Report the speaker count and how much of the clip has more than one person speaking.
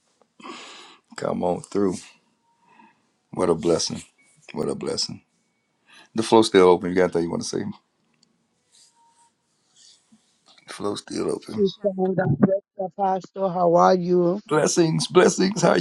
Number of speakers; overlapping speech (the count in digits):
2, about 1%